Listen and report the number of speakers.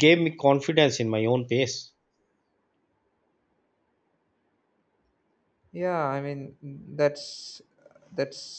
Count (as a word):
two